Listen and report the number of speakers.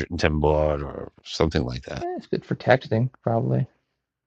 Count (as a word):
two